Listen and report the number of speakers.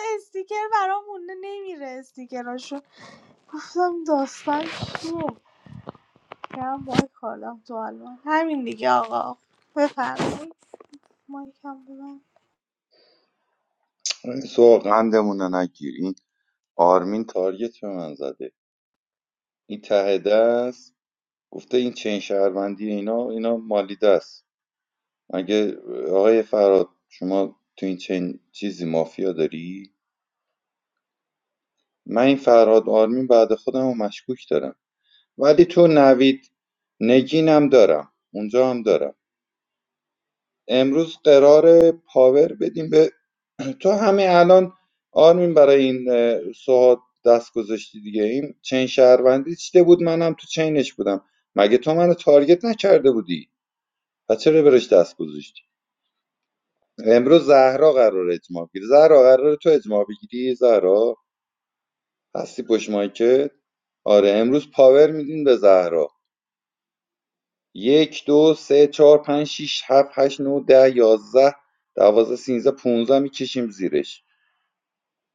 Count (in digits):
2